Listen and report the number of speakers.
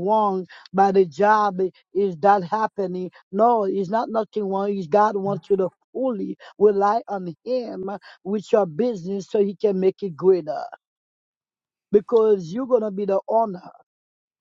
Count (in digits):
1